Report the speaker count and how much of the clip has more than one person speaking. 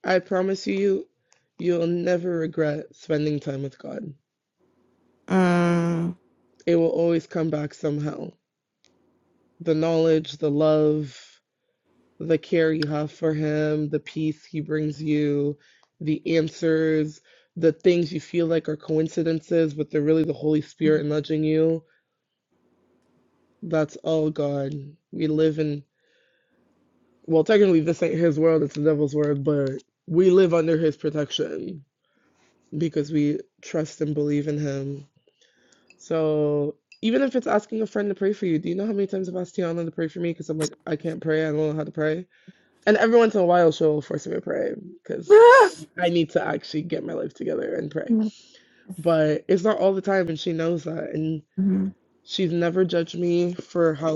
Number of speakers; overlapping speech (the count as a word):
two, under 1%